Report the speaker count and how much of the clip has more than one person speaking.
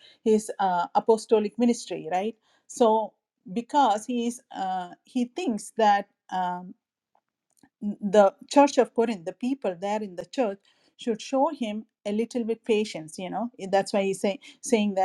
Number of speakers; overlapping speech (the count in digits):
1, no overlap